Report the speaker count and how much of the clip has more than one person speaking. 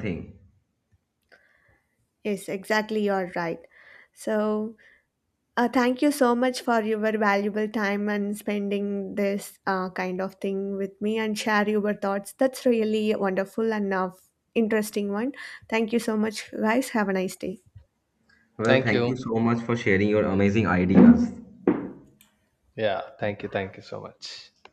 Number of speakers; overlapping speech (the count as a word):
three, about 2%